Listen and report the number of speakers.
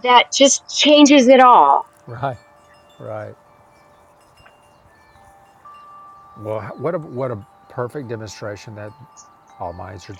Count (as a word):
two